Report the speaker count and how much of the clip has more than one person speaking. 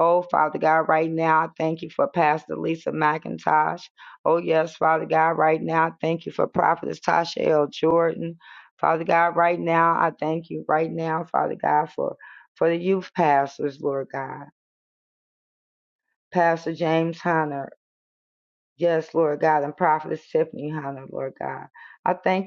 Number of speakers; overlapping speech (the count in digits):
1, no overlap